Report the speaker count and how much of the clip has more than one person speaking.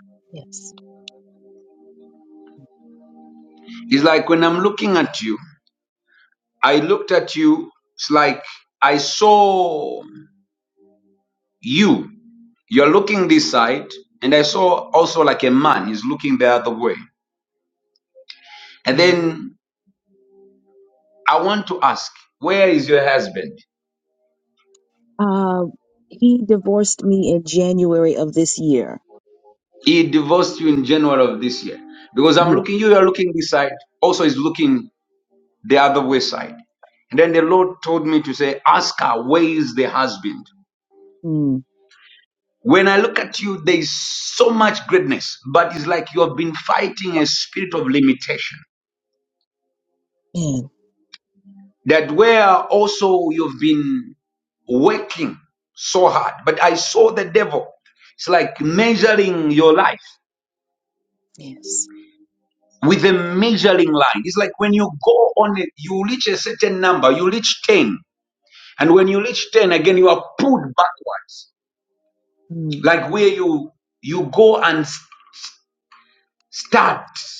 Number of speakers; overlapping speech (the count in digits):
2, about 1%